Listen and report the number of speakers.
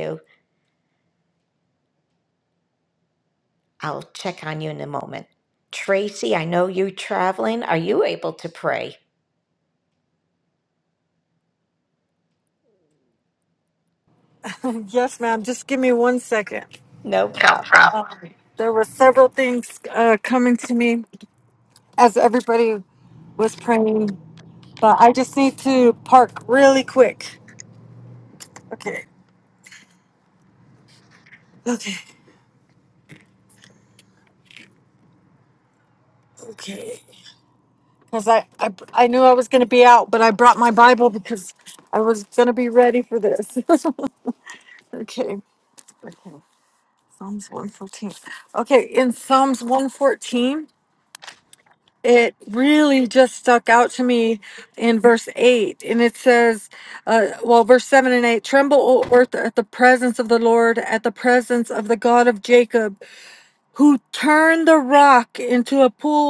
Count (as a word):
two